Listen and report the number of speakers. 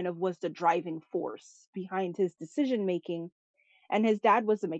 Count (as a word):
one